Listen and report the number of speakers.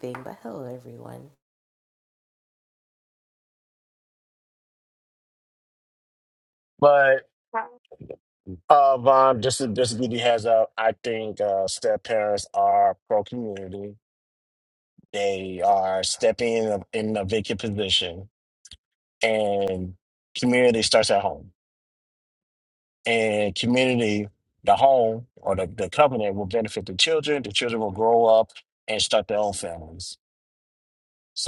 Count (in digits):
2